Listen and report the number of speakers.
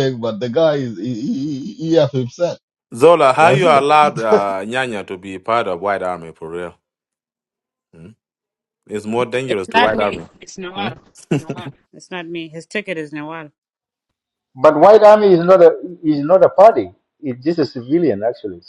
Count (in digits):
4